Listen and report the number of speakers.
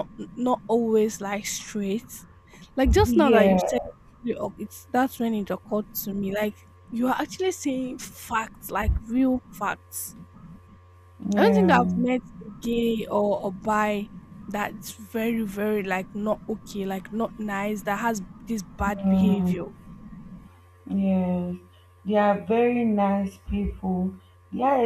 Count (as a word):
two